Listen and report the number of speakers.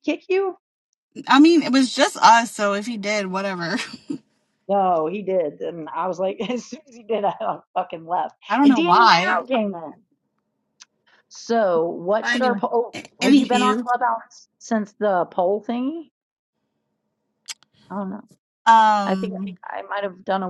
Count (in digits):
2